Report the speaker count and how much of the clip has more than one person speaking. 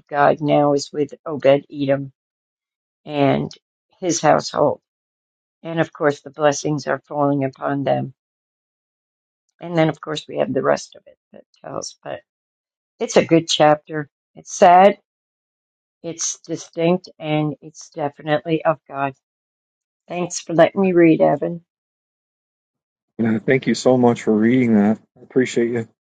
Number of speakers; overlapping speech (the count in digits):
2, no overlap